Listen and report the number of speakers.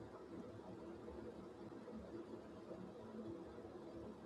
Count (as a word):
zero